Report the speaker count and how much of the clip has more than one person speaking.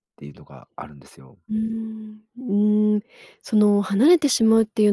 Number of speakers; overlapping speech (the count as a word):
two, no overlap